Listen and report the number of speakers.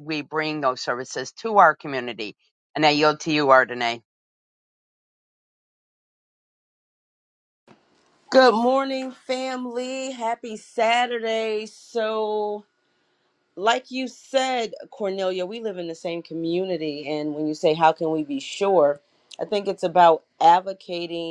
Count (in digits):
2